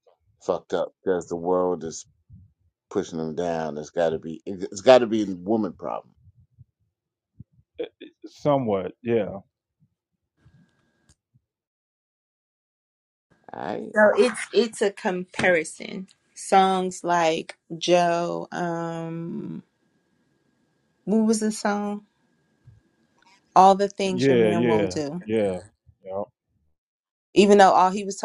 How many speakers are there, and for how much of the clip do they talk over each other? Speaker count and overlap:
3, about 3%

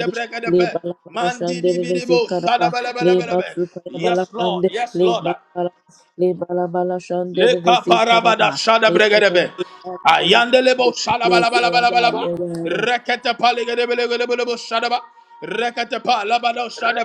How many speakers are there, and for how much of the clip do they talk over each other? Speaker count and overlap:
2, about 51%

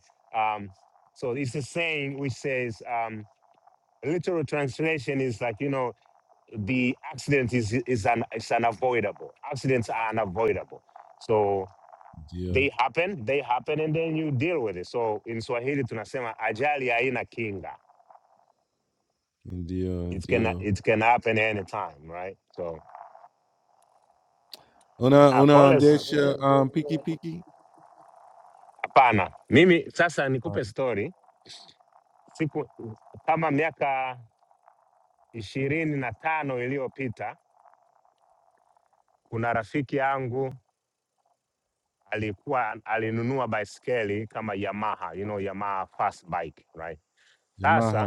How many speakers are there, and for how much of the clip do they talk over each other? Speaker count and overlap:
2, about 4%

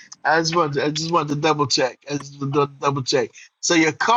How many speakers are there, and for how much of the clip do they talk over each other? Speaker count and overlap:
1, no overlap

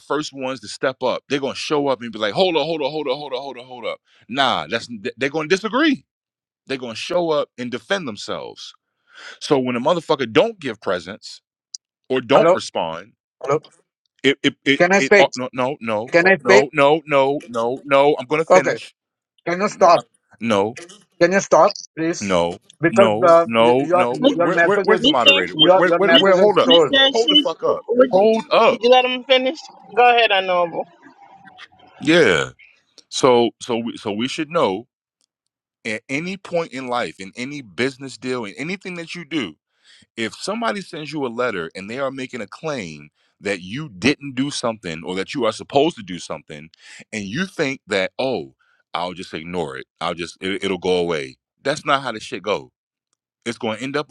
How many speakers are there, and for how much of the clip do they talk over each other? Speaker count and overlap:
3, about 12%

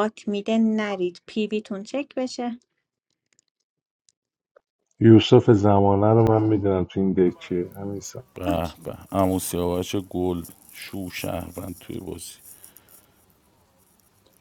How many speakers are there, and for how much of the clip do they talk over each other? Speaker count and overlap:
3, no overlap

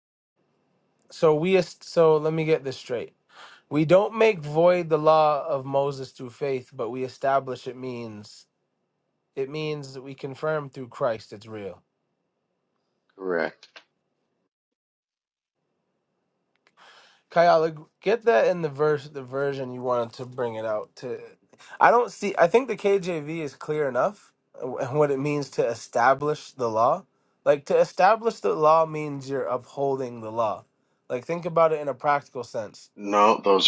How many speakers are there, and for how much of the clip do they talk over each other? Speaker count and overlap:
2, no overlap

